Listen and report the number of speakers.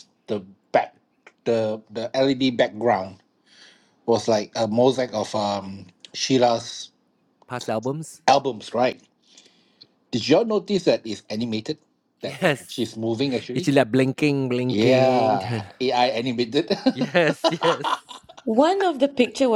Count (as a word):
three